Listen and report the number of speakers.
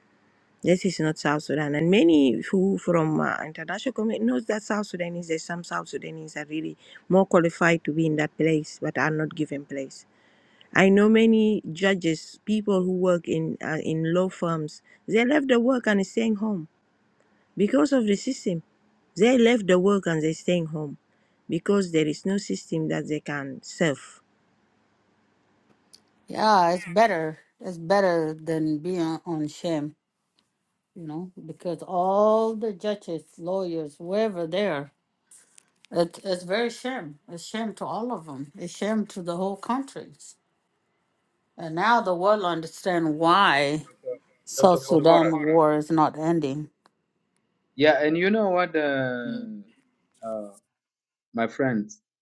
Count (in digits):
3